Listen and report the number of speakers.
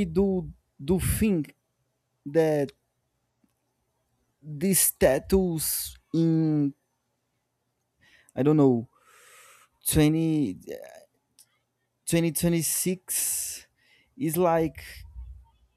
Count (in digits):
1